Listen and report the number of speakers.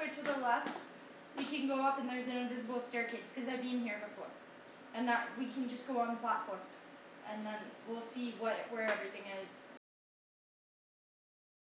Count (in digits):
1